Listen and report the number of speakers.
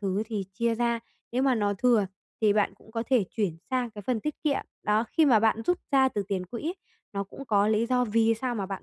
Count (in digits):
1